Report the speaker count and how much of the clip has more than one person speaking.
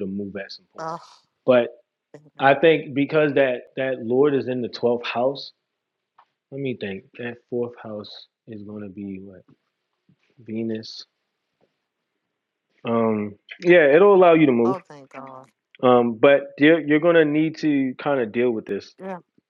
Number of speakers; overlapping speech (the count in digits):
2, about 1%